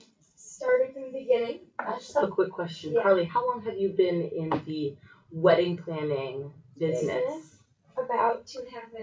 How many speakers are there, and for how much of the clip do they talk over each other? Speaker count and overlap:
two, about 8%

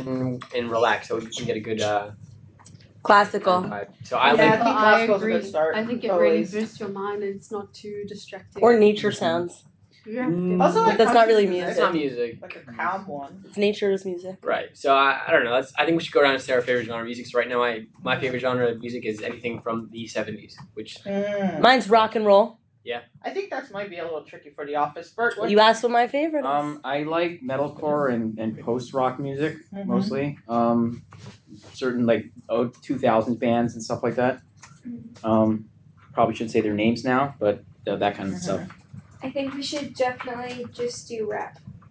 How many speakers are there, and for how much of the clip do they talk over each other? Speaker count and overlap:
six, about 18%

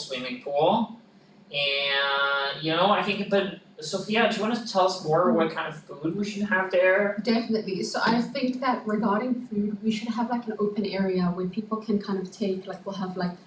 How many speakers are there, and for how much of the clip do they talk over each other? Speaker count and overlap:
two, about 2%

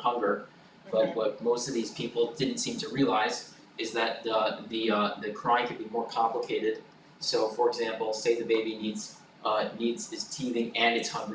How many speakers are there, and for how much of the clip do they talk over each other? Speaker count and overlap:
one, no overlap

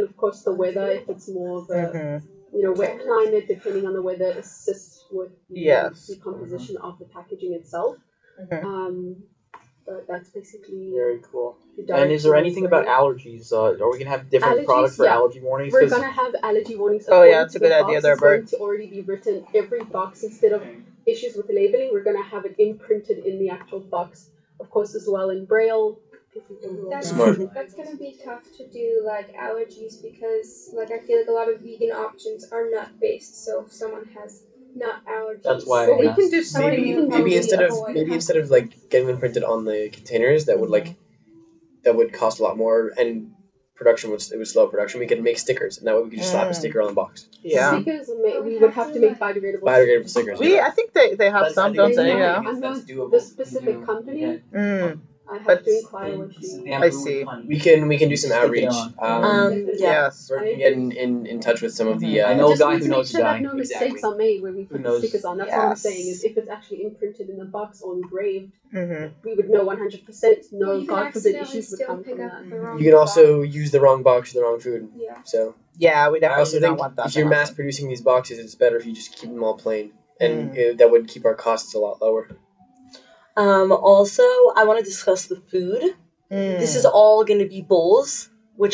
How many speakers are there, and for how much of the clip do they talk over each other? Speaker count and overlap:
six, about 36%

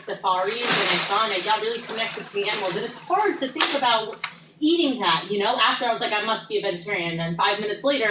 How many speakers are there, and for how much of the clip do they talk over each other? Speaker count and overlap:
one, no overlap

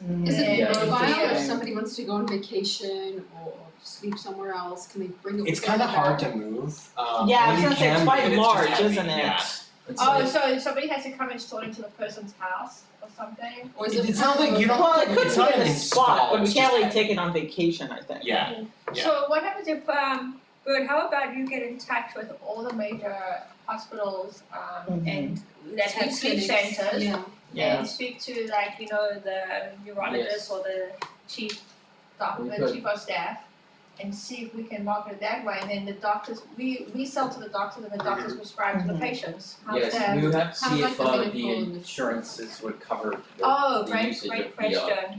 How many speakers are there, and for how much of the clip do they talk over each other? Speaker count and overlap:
five, about 36%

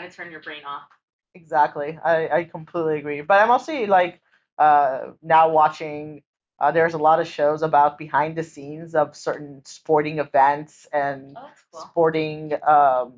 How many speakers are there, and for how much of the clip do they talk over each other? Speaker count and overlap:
two, about 2%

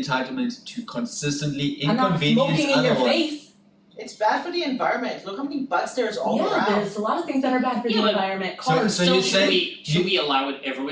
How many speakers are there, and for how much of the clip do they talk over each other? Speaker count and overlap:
four, about 36%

